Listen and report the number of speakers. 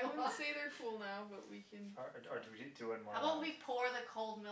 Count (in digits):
3